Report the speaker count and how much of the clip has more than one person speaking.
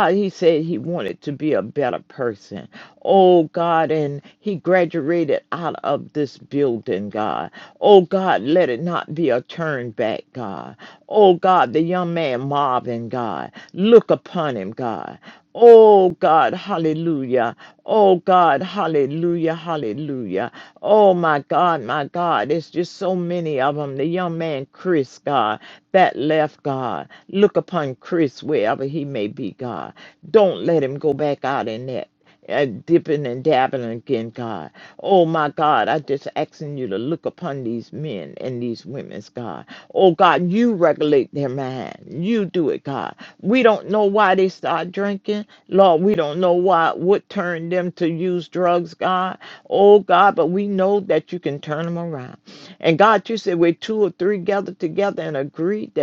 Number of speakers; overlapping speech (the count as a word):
one, no overlap